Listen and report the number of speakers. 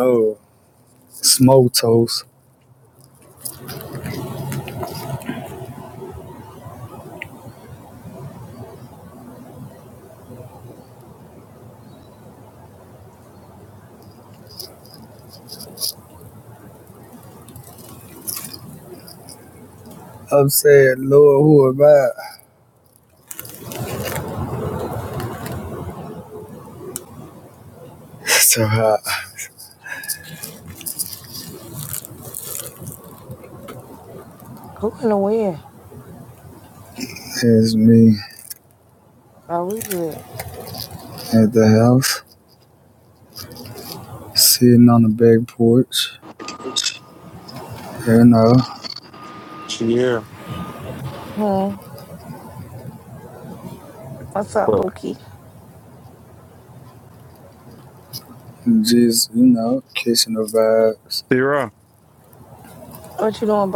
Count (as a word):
three